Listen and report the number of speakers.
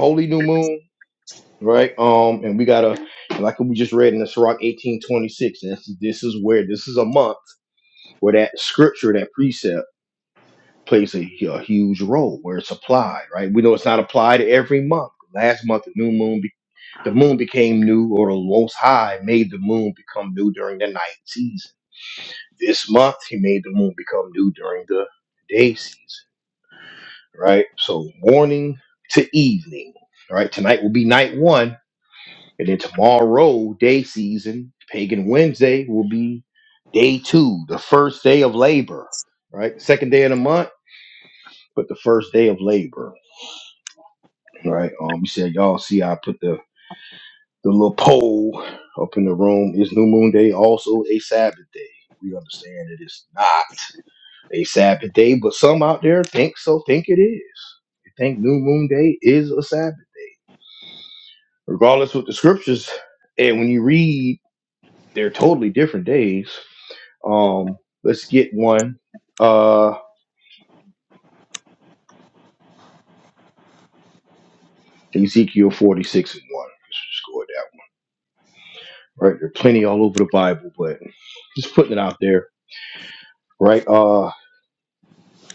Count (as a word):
one